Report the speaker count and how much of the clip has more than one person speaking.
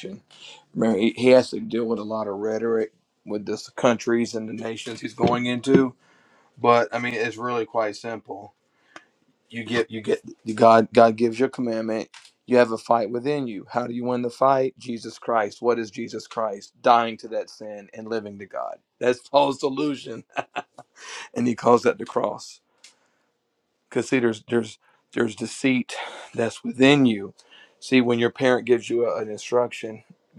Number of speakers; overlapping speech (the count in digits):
1, no overlap